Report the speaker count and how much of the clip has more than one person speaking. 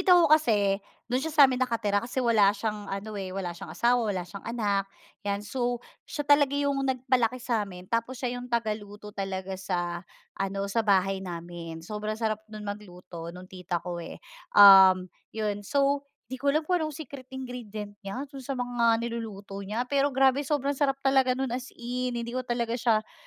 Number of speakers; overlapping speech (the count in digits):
1, no overlap